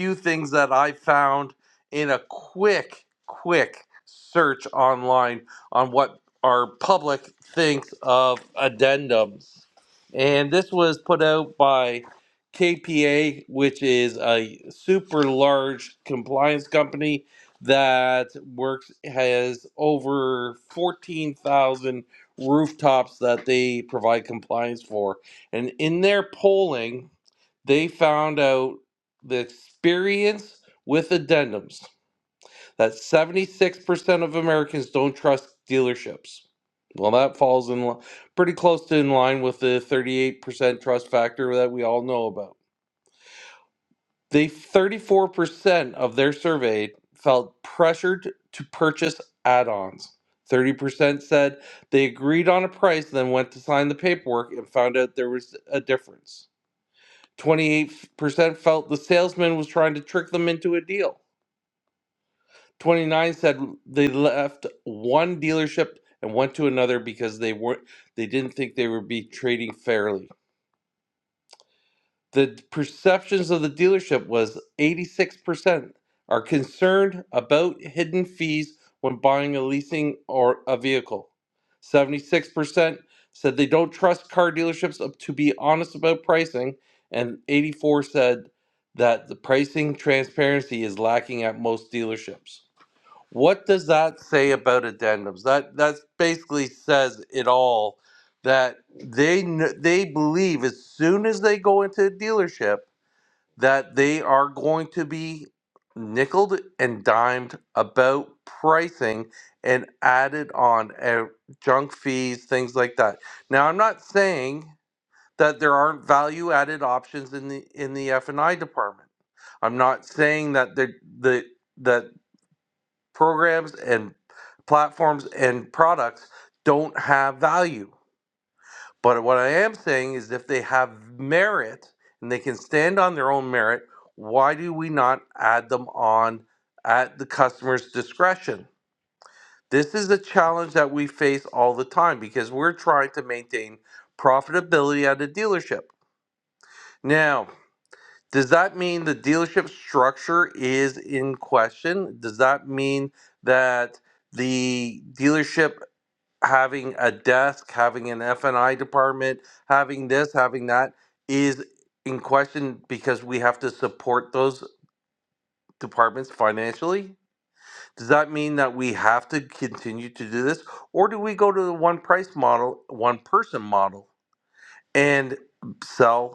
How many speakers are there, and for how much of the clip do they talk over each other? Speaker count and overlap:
one, no overlap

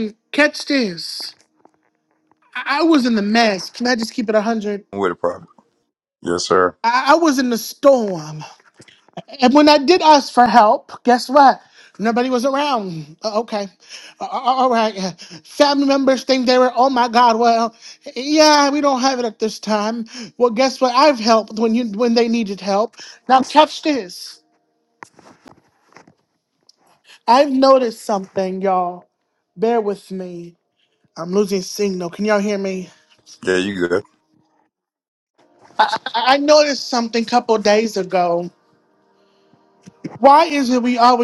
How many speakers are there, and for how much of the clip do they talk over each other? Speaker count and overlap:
two, no overlap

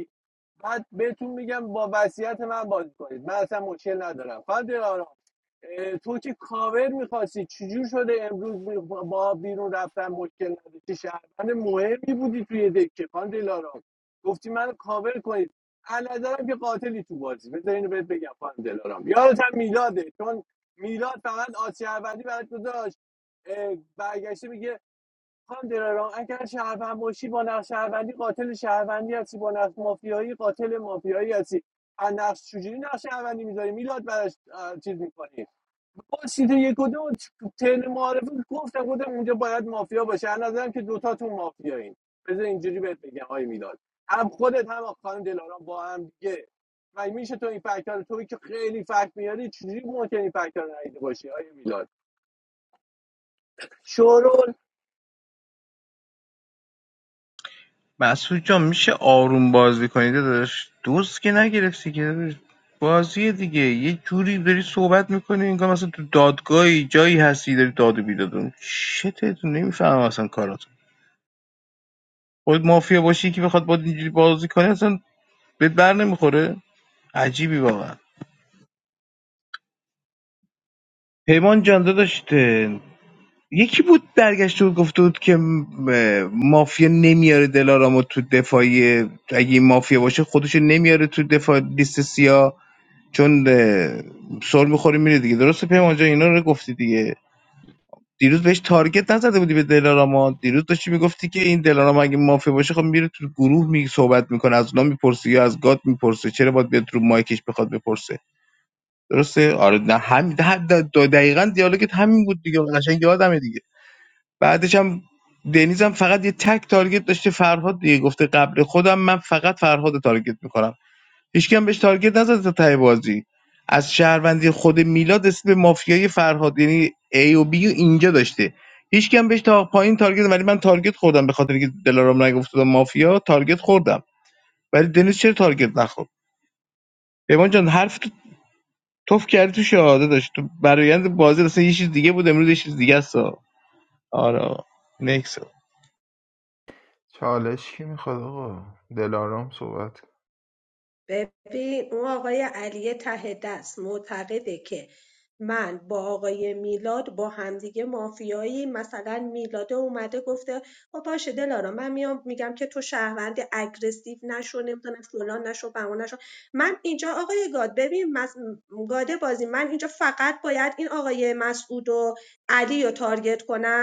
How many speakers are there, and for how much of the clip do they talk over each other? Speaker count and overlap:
four, no overlap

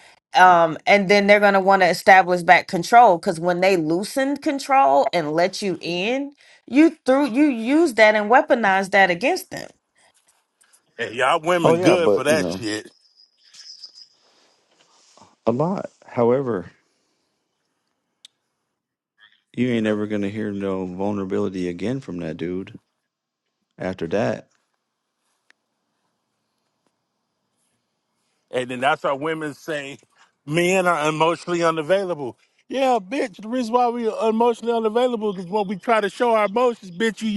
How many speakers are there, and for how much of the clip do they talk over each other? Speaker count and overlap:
three, about 3%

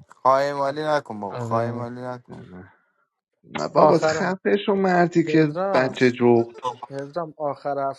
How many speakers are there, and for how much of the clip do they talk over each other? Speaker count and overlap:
three, about 23%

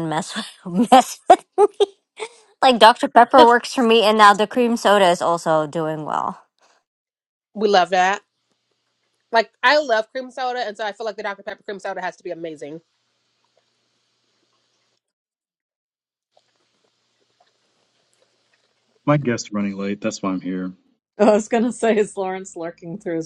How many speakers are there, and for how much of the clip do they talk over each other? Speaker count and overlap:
four, no overlap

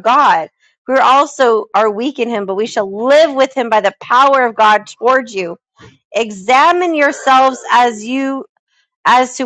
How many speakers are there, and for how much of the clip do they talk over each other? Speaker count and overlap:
one, no overlap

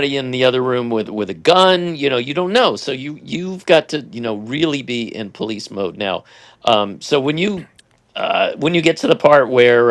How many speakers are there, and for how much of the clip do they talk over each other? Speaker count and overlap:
one, no overlap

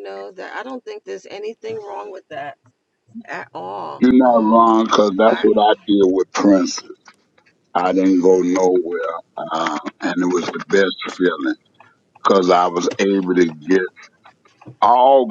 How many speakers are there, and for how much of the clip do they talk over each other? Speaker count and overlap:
two, about 9%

